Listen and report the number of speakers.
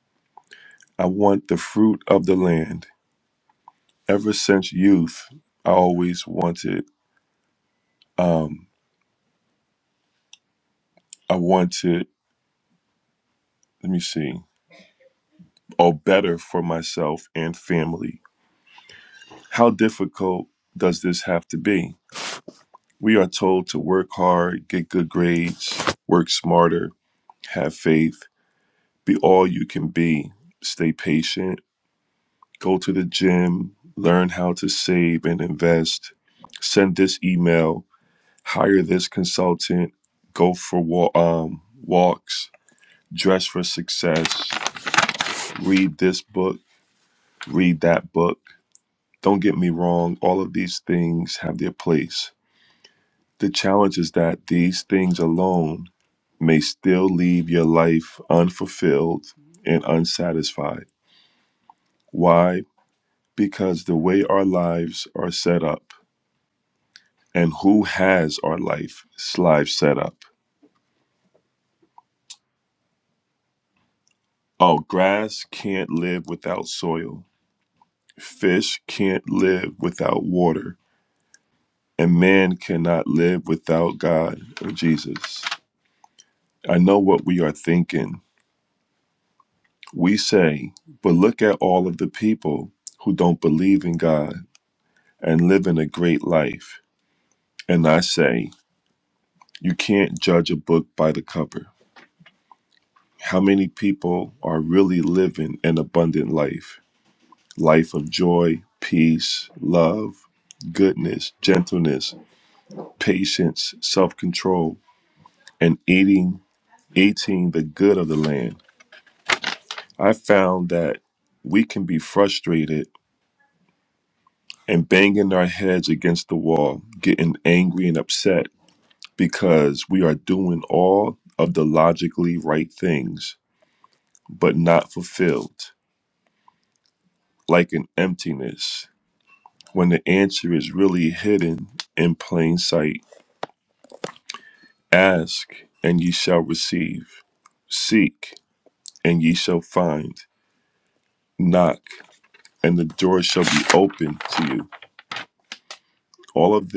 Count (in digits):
1